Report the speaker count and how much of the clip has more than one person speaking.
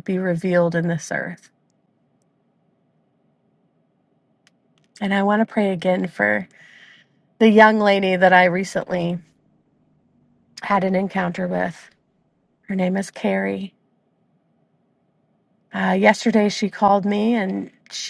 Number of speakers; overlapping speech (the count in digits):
1, no overlap